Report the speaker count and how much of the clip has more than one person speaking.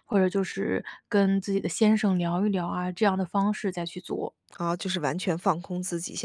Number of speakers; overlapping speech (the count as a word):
two, no overlap